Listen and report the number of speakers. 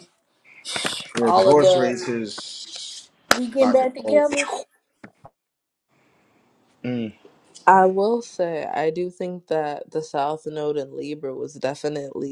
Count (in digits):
3